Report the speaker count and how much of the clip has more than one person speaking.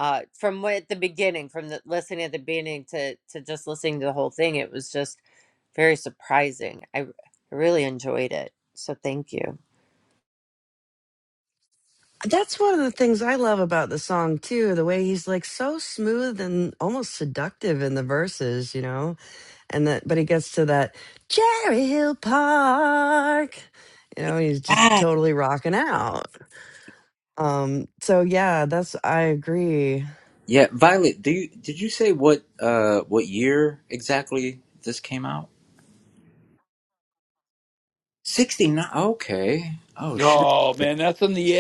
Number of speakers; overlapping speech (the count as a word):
four, about 2%